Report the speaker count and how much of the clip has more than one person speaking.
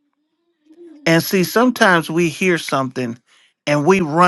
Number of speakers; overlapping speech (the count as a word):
one, no overlap